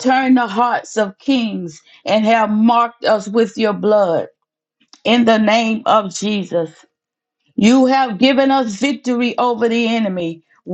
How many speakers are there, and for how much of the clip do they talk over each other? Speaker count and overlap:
1, no overlap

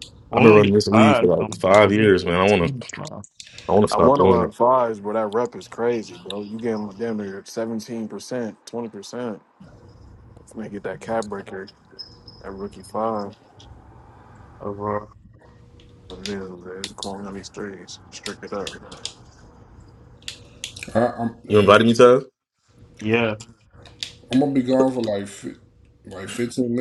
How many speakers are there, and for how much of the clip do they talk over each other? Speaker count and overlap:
4, about 10%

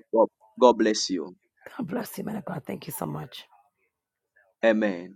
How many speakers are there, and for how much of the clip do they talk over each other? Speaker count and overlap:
2, no overlap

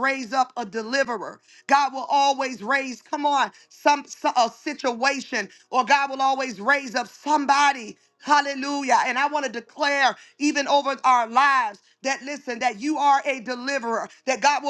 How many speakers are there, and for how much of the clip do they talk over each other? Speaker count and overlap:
1, no overlap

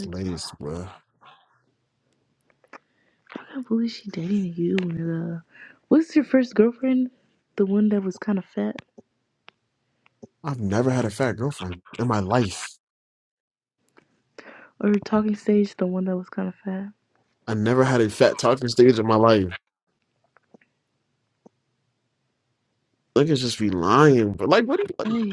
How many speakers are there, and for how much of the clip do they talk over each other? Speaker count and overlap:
2, about 1%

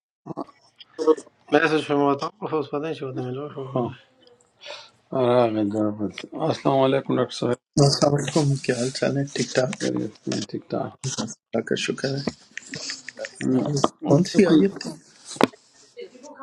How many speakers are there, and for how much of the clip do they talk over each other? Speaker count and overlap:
3, about 6%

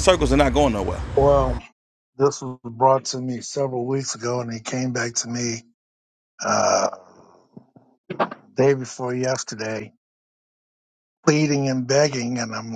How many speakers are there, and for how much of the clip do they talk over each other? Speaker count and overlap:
2, no overlap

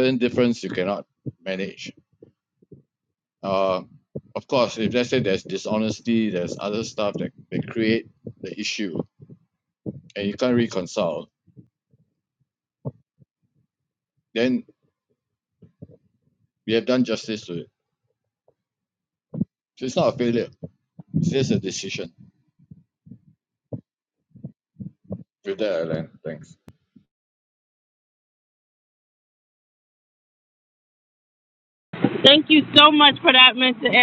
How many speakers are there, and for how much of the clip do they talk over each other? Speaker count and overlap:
2, no overlap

